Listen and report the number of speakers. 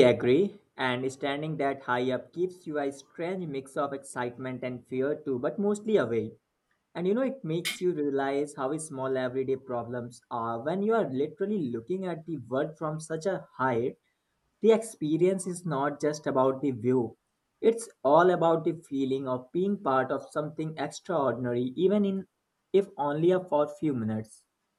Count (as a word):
one